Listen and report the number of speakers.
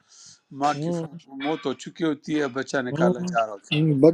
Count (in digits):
2